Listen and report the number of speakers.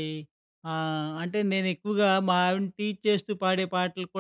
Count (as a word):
one